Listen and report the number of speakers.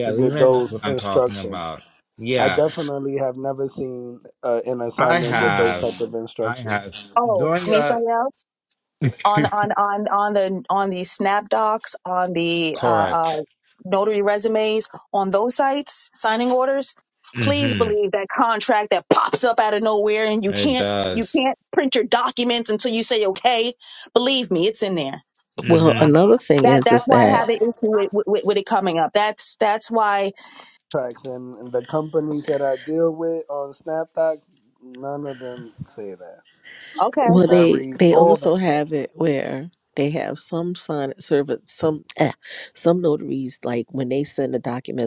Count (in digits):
4